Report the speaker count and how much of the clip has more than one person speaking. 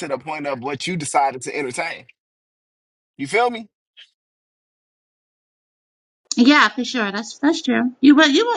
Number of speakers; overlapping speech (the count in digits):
2, no overlap